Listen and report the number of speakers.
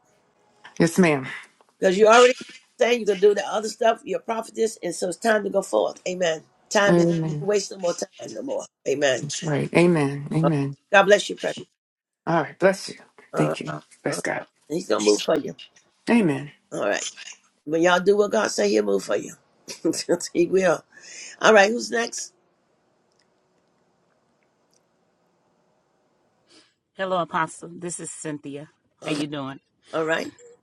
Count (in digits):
3